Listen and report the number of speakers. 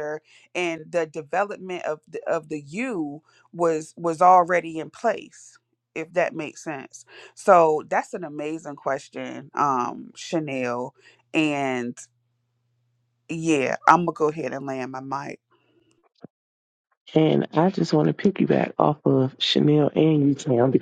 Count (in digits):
2